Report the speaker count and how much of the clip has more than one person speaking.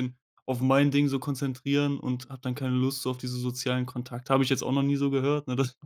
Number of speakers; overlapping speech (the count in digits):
1, no overlap